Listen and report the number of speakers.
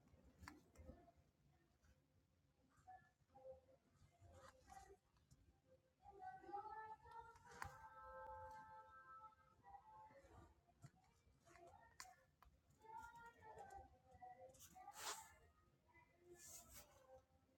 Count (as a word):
zero